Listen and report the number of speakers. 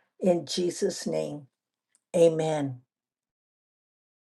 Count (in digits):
1